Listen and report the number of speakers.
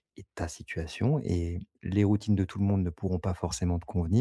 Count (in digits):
1